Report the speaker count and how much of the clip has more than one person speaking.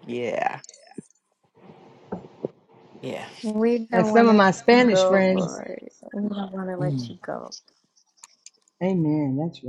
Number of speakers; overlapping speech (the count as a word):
three, about 19%